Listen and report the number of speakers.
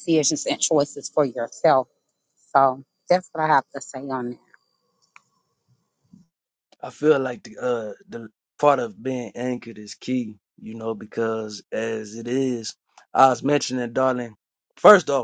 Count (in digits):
2